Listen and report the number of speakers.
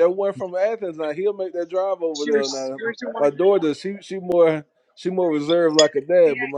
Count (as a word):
one